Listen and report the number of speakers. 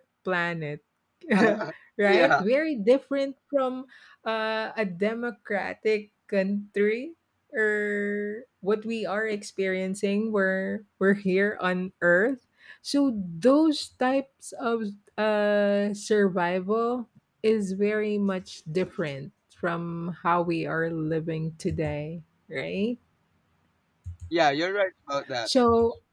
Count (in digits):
2